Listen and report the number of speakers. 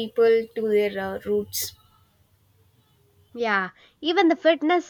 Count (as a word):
two